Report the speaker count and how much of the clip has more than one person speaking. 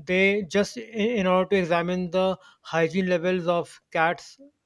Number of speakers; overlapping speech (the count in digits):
1, no overlap